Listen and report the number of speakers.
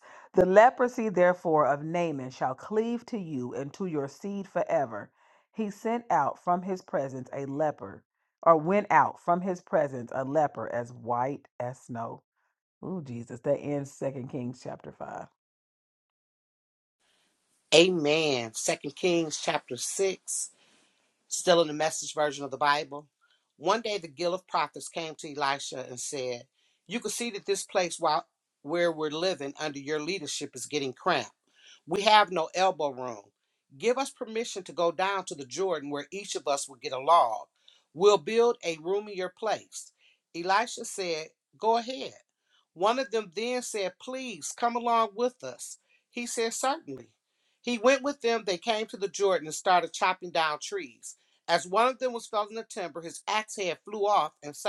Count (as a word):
two